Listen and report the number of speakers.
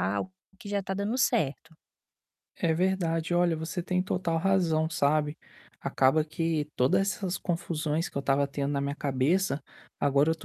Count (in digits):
2